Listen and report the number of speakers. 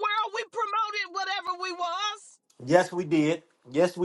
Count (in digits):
2